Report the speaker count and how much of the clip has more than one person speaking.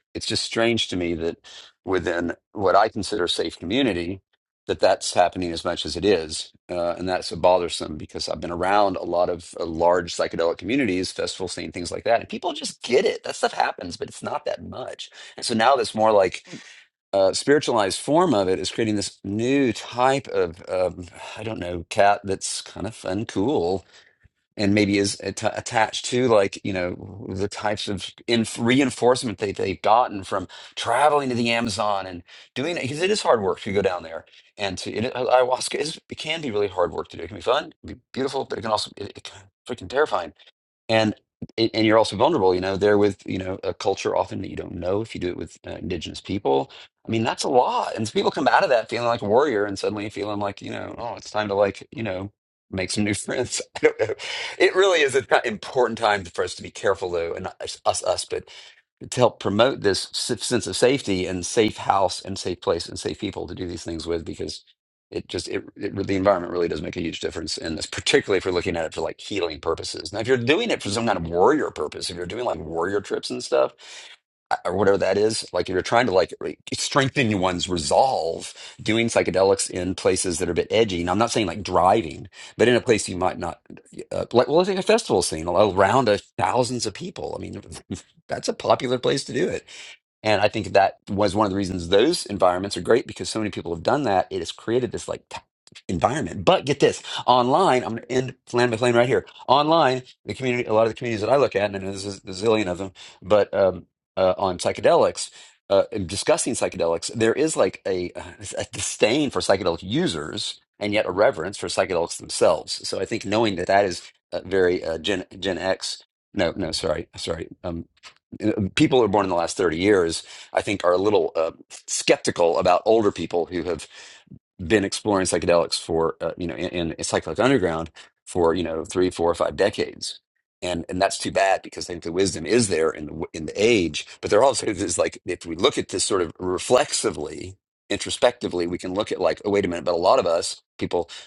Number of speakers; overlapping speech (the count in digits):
1, no overlap